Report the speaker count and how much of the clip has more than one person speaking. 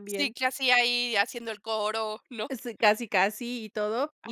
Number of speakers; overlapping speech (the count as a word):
two, about 5%